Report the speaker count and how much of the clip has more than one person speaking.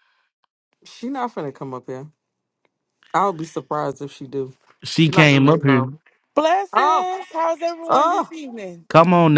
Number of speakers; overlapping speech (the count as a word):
three, about 17%